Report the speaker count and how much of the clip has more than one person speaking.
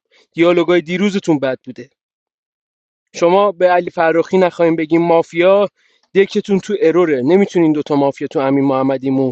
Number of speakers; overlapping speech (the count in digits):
1, no overlap